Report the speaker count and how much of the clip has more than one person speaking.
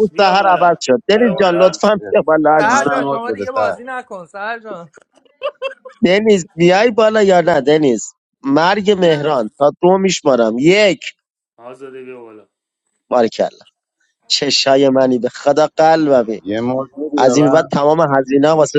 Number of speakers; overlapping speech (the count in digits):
4, about 17%